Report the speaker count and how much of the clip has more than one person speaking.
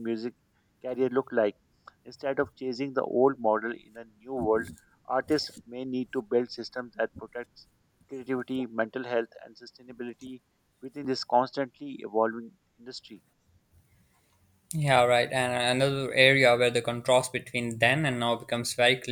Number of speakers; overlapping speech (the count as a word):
two, no overlap